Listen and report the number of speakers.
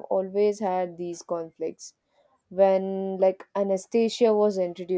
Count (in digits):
1